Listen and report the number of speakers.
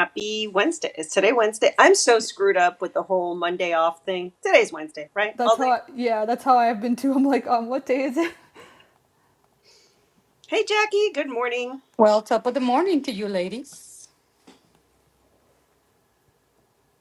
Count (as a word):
three